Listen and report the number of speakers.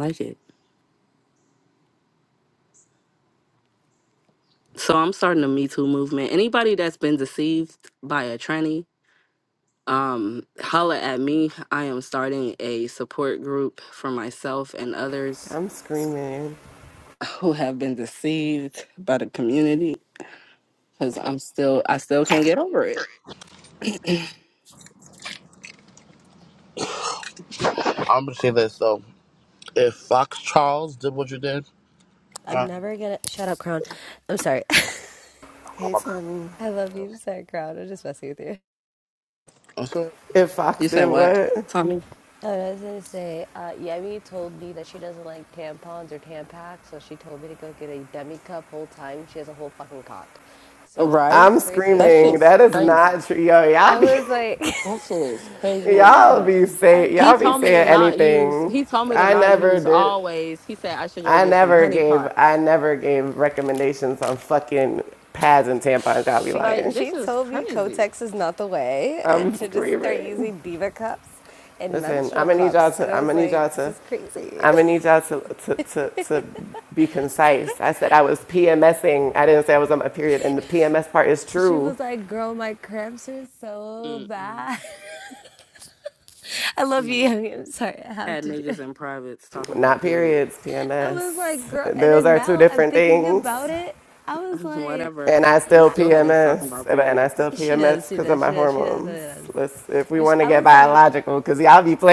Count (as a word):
four